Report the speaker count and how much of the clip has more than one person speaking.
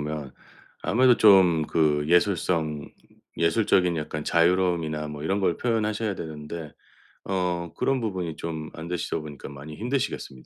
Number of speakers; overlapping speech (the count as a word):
one, no overlap